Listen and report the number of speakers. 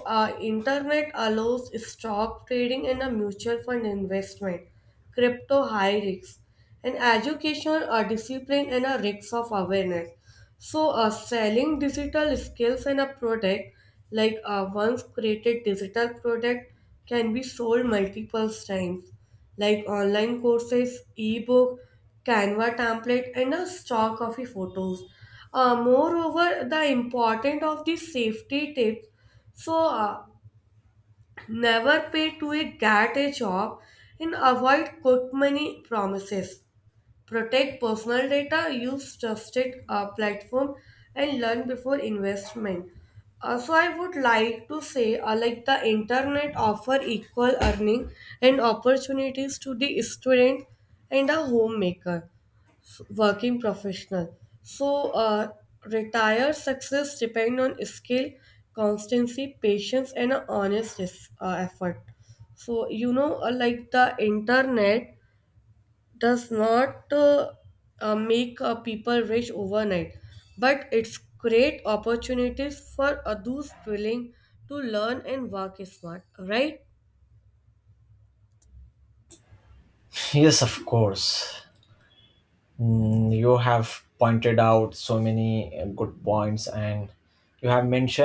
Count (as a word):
two